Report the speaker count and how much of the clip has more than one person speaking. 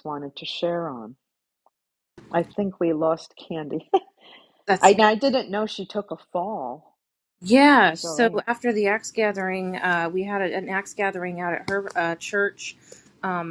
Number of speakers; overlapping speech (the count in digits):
2, about 5%